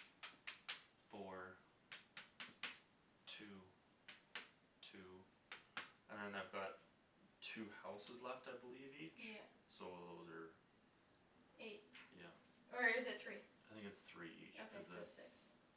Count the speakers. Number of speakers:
2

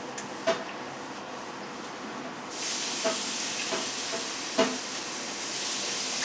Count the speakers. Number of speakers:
0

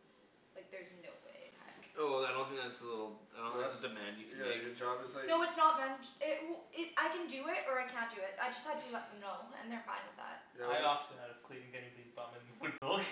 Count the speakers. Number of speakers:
4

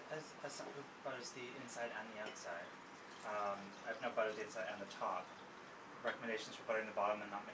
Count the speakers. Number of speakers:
1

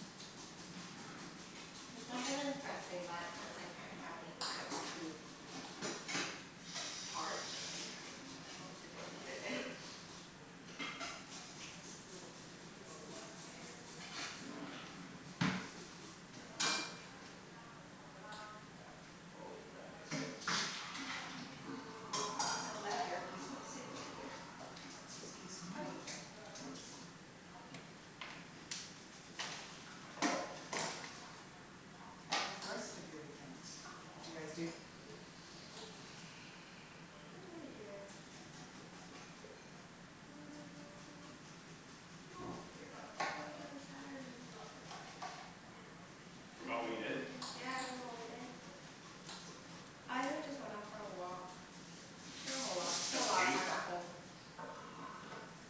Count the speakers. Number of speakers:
3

